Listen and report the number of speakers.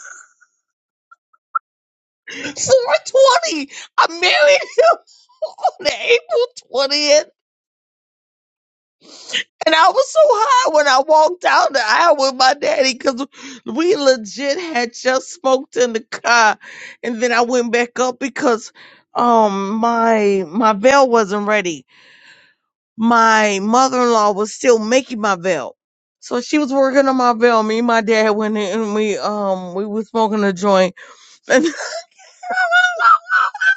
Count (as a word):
one